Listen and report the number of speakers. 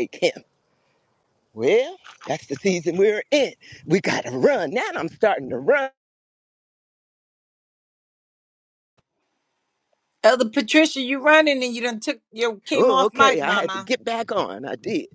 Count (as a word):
two